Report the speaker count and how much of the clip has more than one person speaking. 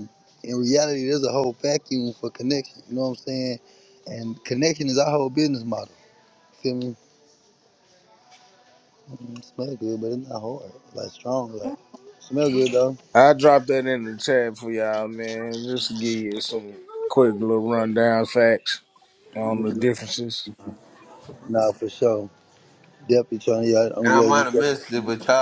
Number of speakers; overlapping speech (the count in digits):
3, about 2%